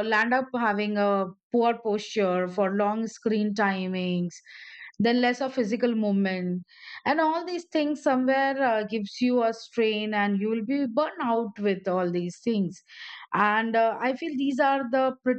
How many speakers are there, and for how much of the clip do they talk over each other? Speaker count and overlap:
1, no overlap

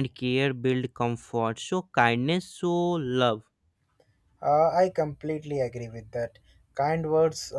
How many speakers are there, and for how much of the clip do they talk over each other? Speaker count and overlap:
2, no overlap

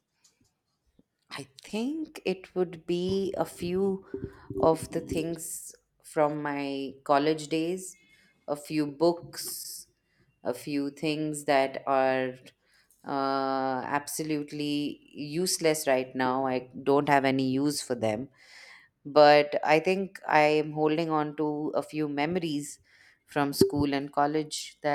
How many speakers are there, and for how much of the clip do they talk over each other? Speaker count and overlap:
1, no overlap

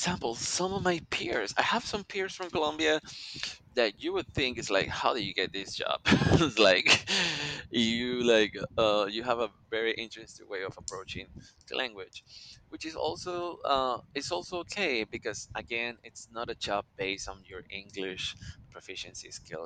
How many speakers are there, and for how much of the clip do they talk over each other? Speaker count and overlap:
1, no overlap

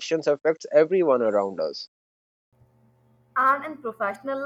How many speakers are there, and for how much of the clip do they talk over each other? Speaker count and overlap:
2, no overlap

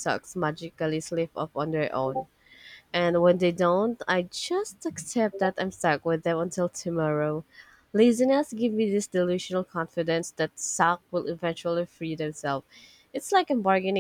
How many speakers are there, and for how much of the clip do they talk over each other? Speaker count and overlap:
1, no overlap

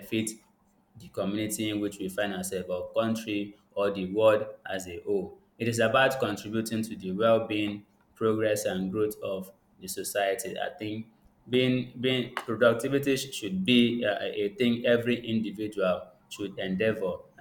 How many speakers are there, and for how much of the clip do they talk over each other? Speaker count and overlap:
1, no overlap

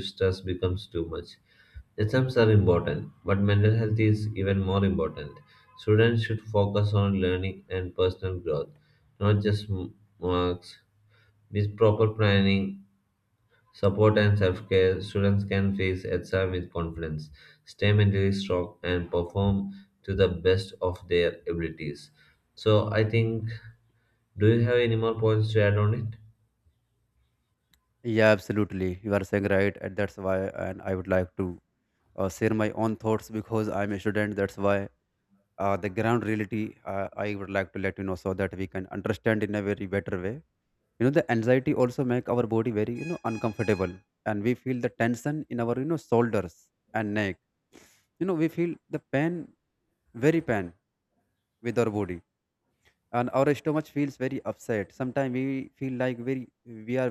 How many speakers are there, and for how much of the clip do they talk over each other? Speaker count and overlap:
2, no overlap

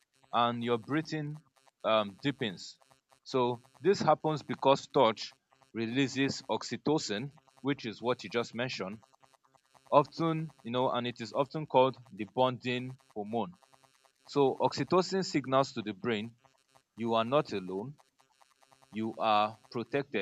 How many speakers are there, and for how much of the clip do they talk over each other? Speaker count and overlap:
1, no overlap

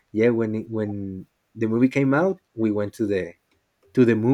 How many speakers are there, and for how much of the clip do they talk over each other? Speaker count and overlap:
1, no overlap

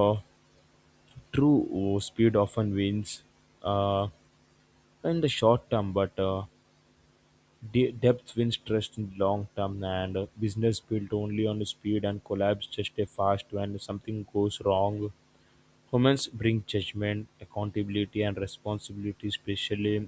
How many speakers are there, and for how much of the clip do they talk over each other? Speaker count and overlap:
1, no overlap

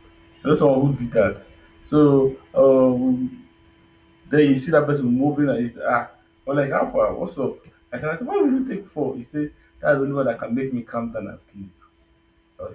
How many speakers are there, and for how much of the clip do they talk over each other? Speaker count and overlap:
1, no overlap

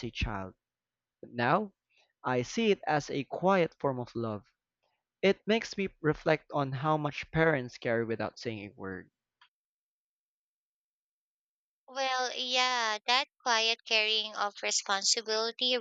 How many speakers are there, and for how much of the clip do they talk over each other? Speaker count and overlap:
2, no overlap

